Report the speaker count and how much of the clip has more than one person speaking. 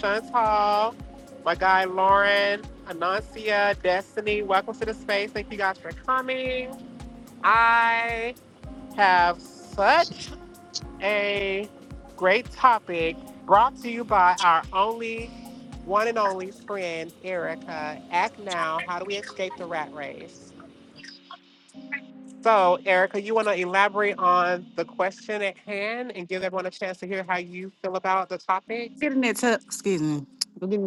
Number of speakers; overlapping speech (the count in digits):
2, no overlap